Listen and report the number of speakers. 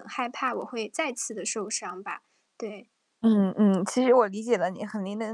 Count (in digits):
2